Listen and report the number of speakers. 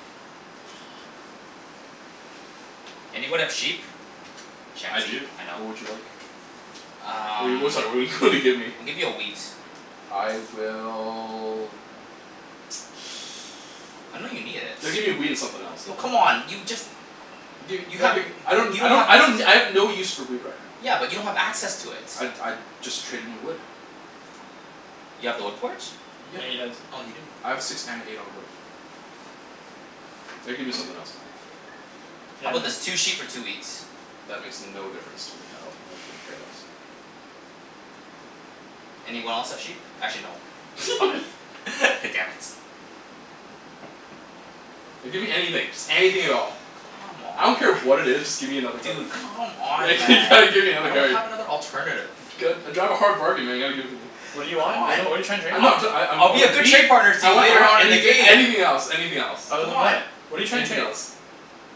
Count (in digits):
3